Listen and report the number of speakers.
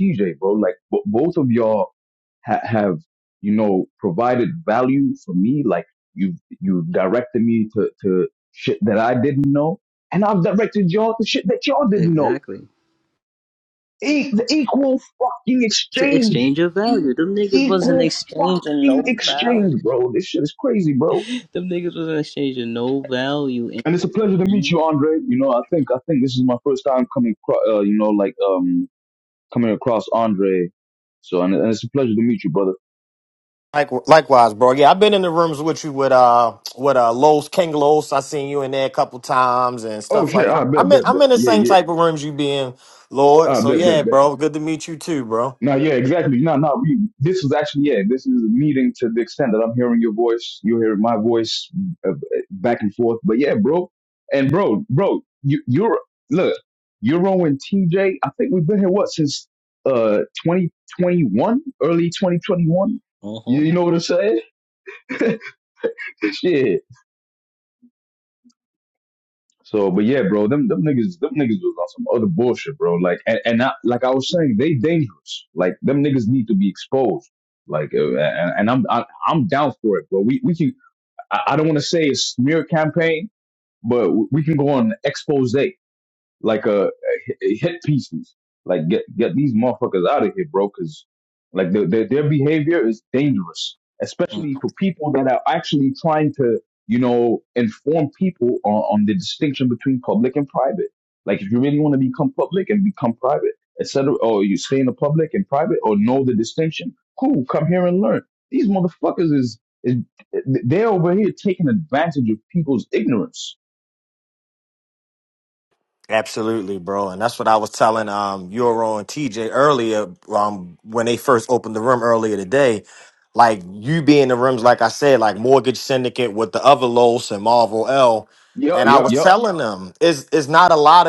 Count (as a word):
three